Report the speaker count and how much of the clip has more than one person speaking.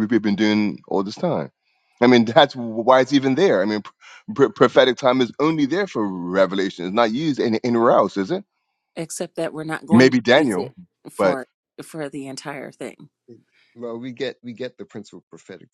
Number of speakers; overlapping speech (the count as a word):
three, about 6%